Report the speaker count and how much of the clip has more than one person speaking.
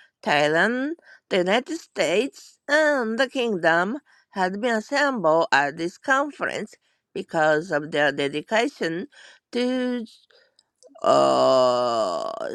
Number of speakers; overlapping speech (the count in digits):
1, no overlap